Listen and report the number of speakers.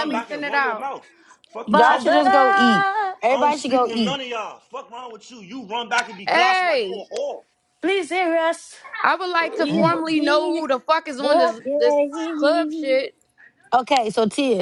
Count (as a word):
four